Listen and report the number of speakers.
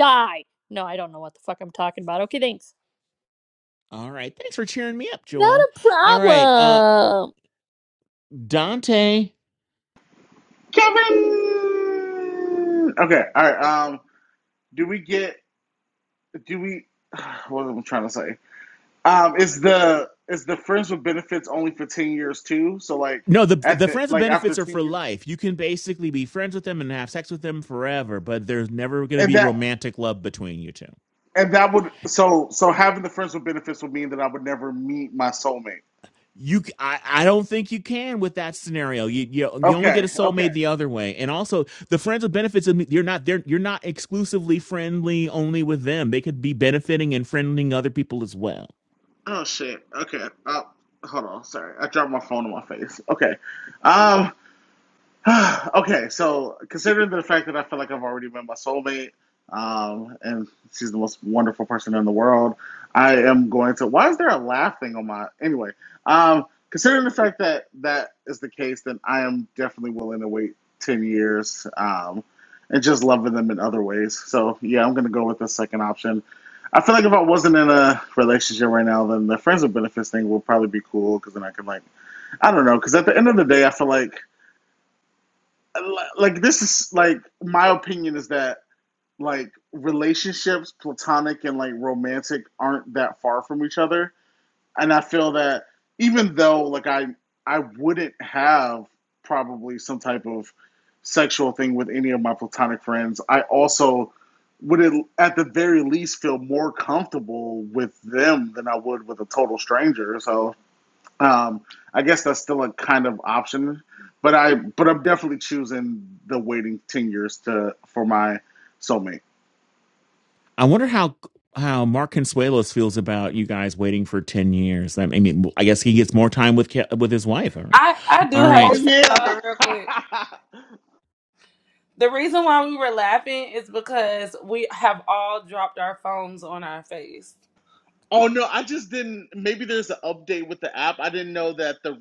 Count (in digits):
4